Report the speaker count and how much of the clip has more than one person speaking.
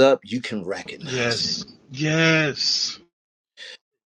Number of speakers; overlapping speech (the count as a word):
two, about 13%